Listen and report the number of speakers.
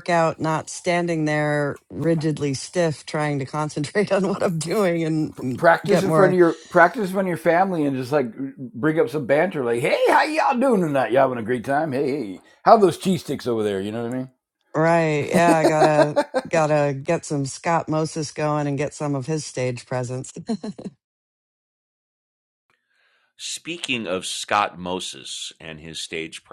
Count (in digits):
3